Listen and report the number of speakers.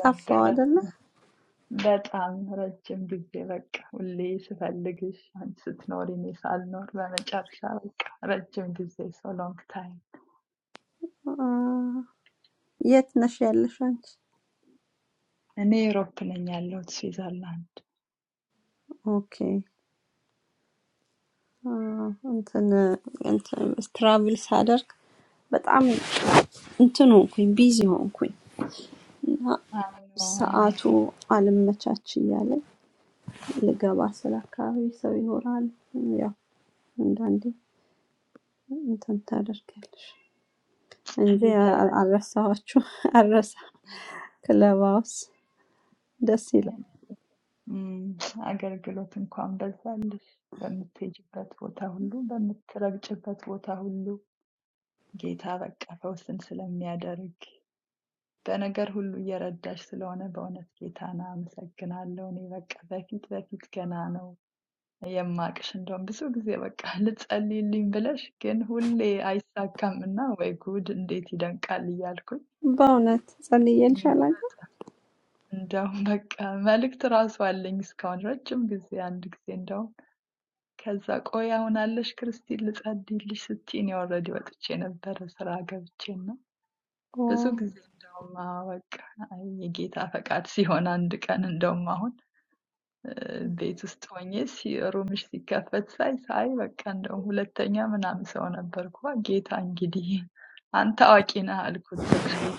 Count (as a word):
two